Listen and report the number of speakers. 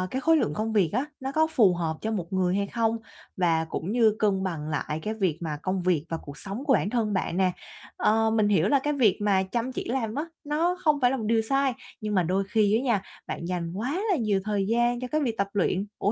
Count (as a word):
one